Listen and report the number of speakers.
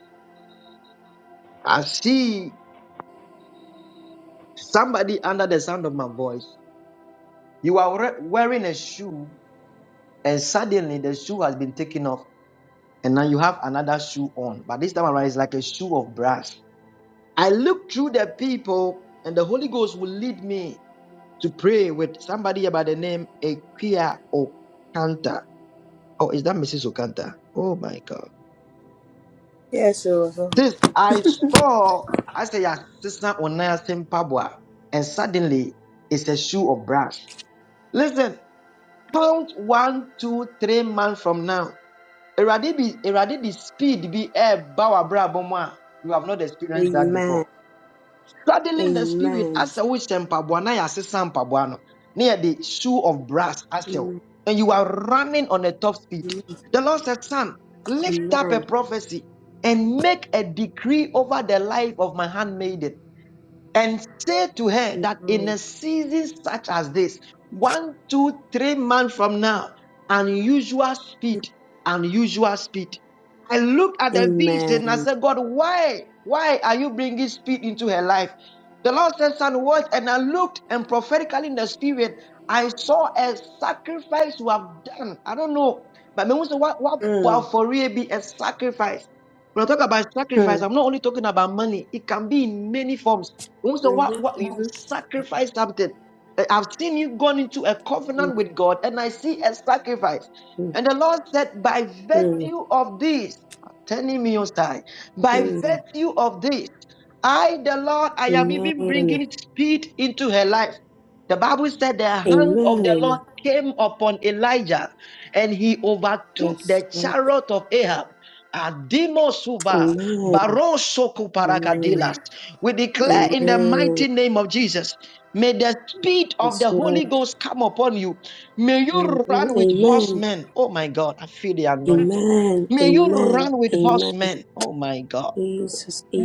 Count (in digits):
2